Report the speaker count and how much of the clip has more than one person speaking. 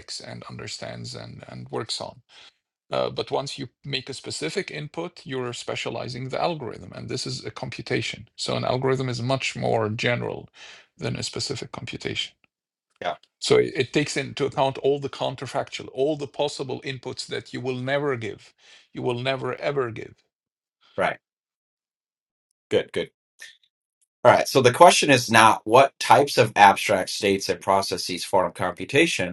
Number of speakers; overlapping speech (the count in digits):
2, no overlap